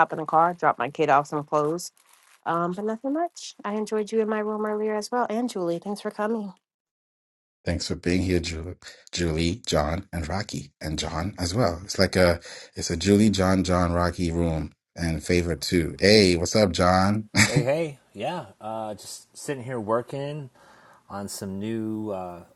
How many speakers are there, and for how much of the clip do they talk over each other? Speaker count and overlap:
three, no overlap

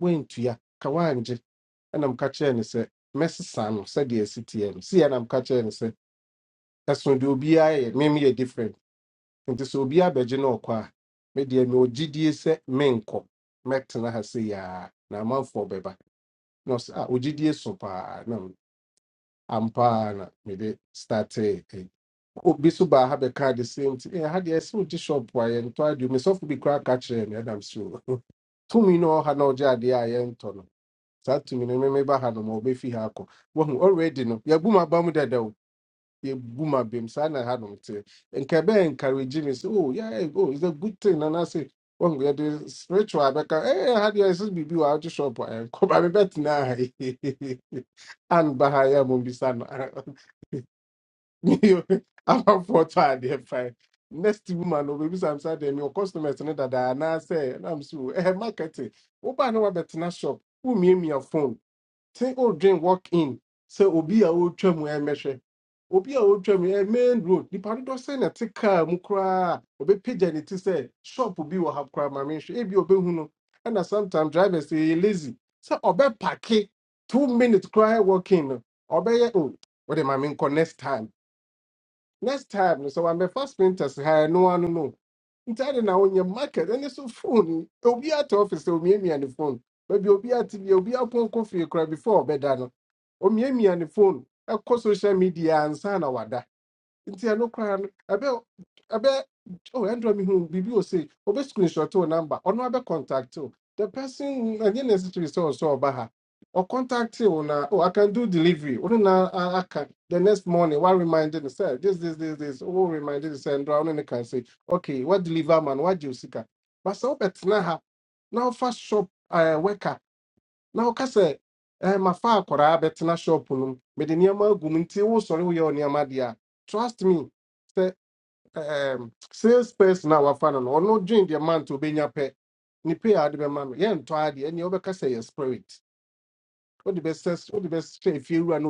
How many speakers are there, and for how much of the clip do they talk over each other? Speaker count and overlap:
one, no overlap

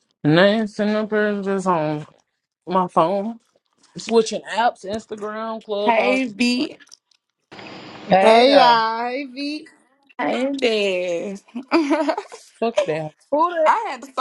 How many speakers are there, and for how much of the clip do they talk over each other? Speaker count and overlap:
four, about 7%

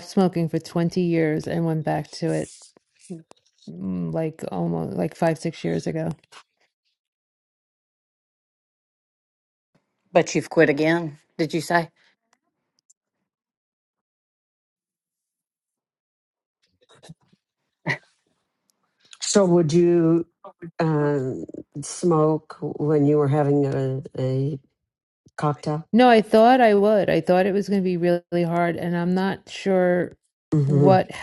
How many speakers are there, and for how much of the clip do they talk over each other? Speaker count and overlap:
three, about 1%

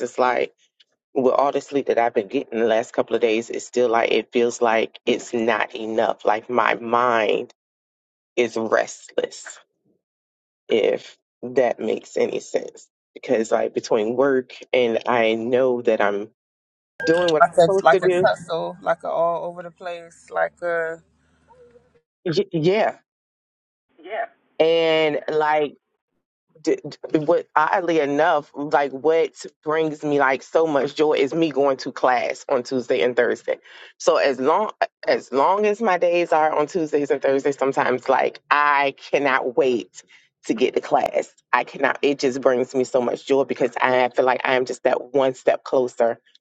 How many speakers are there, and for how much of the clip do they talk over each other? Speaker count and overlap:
two, about 2%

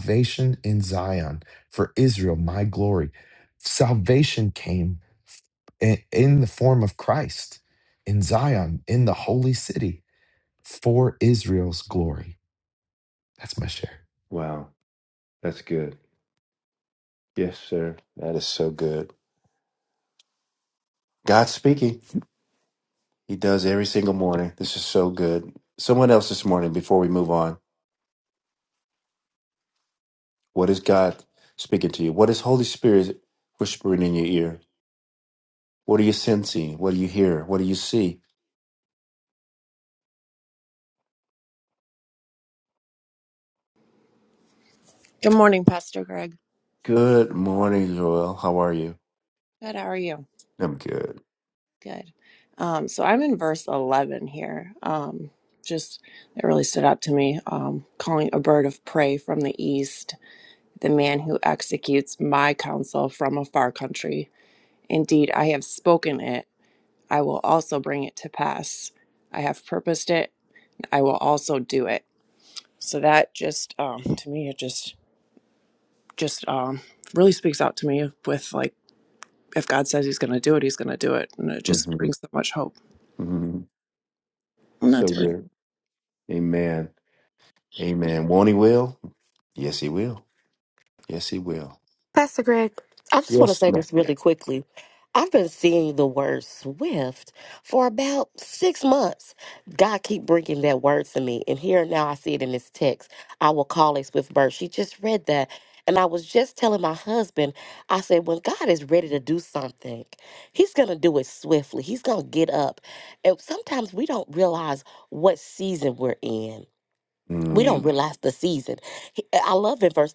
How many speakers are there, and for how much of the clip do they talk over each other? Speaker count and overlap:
four, about 1%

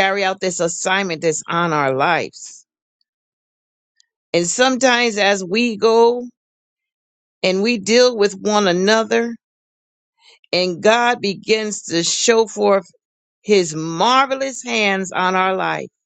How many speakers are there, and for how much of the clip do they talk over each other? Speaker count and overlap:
one, no overlap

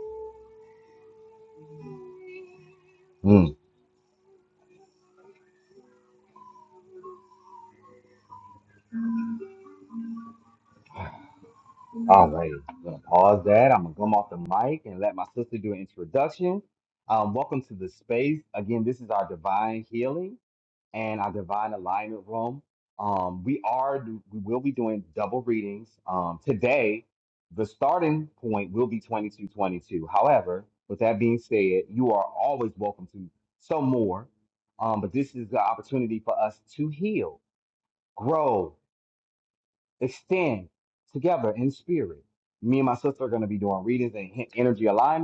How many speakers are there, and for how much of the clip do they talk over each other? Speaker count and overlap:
one, no overlap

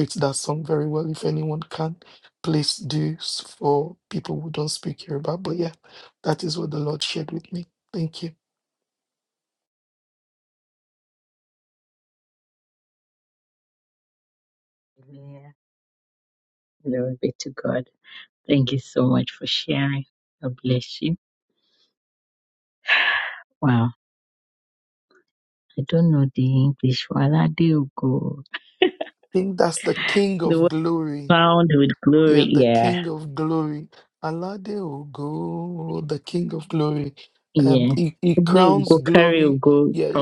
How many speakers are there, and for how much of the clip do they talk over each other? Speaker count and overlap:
two, about 7%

